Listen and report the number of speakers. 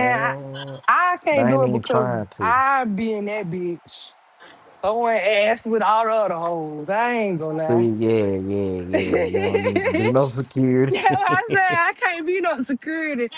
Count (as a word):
two